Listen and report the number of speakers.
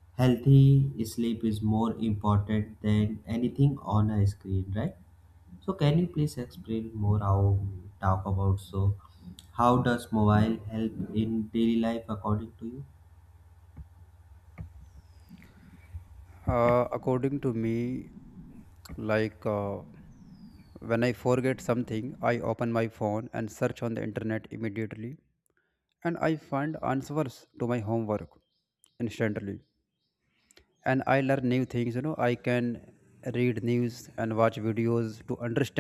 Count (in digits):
2